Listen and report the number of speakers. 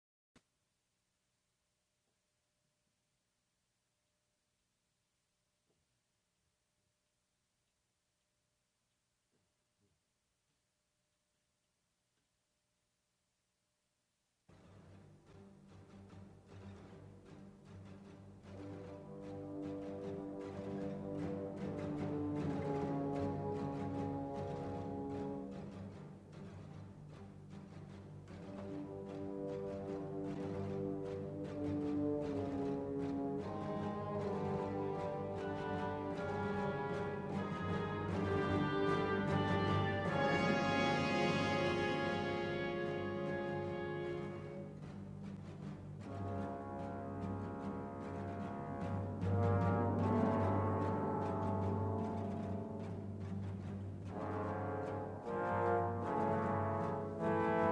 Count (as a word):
zero